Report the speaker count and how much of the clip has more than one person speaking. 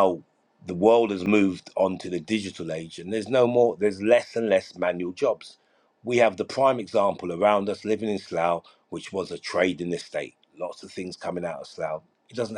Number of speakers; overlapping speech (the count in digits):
1, no overlap